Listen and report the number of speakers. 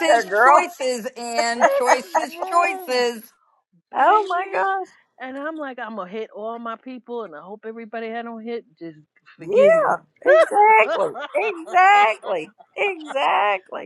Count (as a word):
three